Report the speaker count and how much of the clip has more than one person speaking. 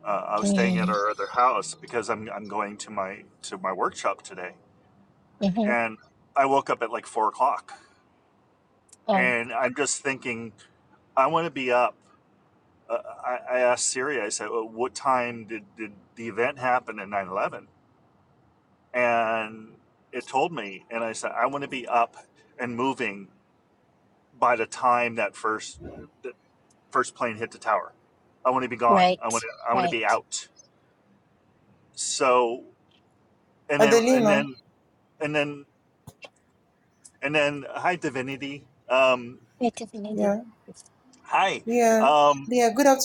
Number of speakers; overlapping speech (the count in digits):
3, about 7%